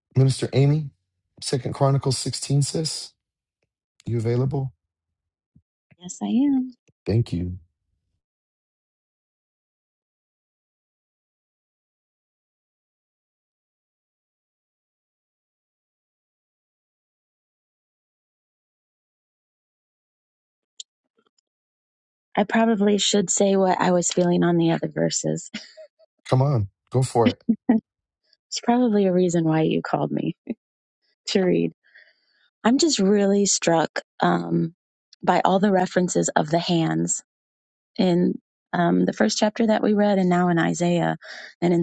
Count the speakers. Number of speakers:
two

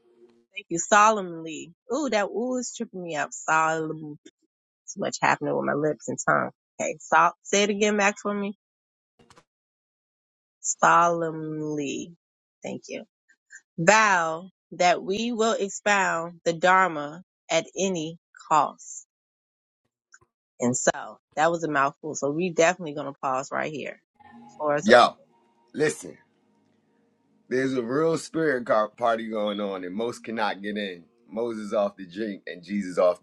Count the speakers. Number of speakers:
two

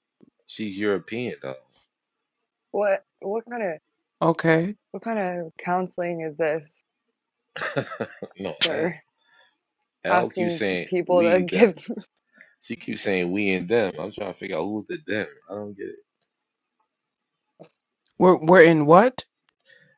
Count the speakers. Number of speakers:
three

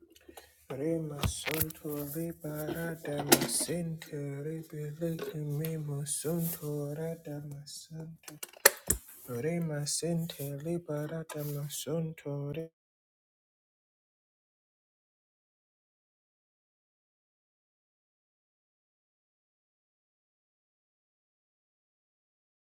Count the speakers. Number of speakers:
one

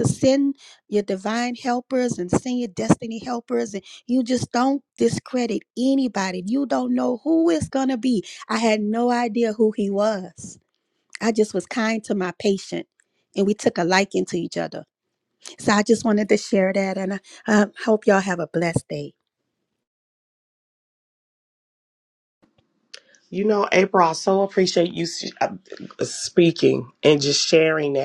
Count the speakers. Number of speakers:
two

